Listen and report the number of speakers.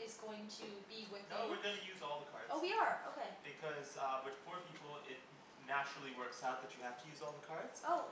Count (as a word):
two